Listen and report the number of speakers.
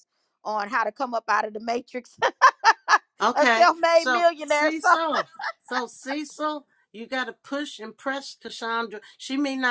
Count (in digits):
2